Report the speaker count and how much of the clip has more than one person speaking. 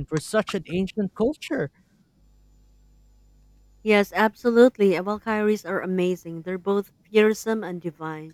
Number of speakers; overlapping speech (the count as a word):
two, no overlap